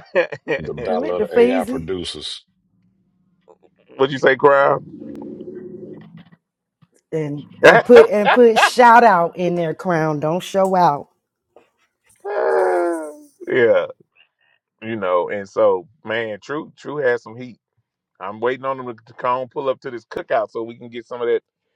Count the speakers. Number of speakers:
3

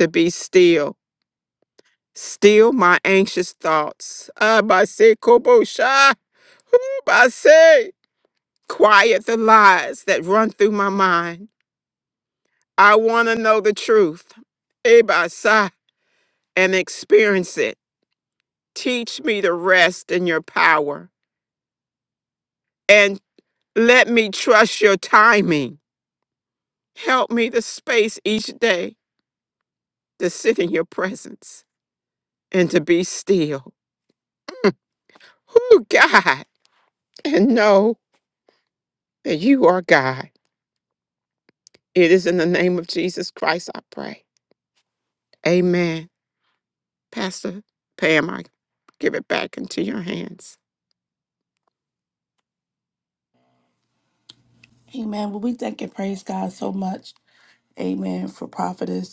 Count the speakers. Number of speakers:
2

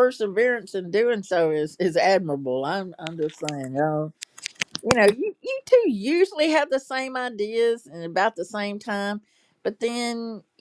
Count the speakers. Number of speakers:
1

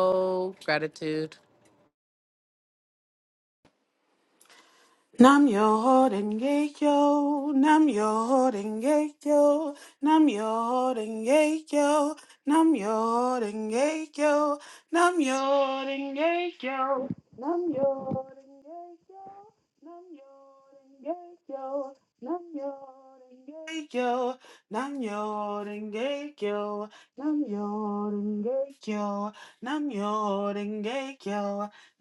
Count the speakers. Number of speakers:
2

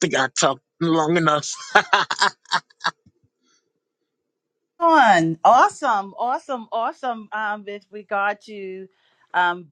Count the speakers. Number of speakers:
2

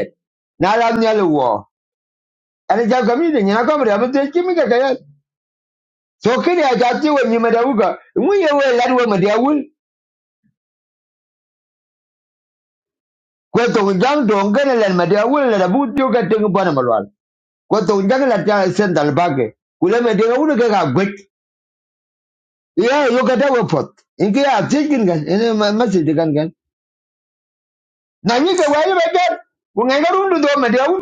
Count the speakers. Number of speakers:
1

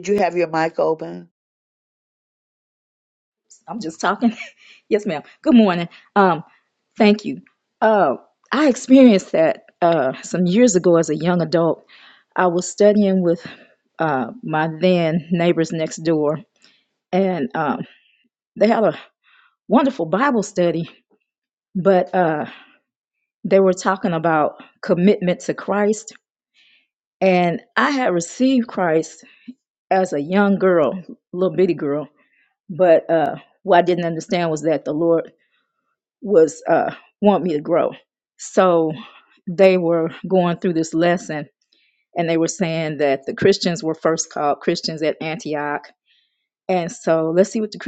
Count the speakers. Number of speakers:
2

